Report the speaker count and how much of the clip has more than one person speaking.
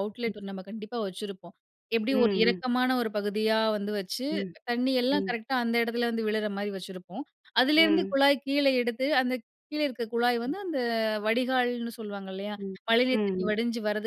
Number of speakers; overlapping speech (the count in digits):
2, about 13%